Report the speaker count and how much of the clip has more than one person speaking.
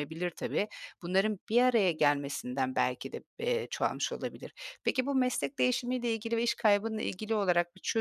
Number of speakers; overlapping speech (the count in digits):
1, no overlap